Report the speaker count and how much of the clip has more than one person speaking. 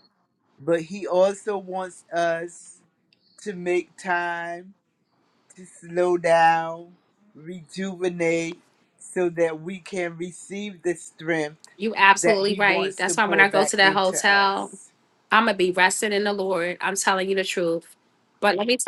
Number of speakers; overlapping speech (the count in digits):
2, about 12%